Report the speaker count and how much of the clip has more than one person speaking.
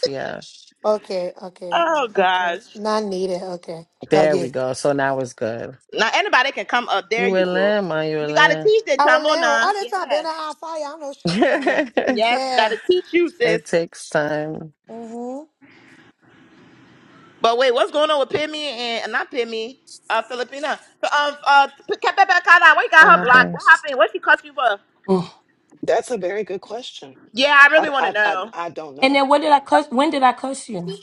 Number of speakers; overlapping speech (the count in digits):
5, about 18%